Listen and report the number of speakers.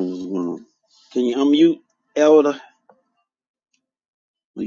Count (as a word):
one